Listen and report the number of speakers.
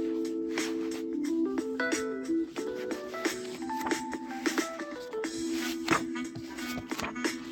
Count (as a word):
zero